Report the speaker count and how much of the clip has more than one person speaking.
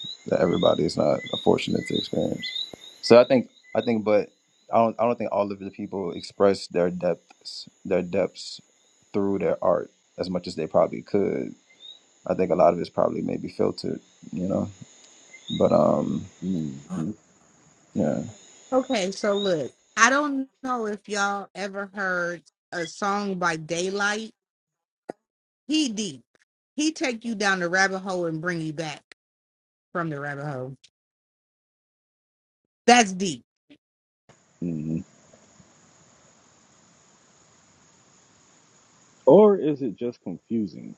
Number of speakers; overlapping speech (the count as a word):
three, no overlap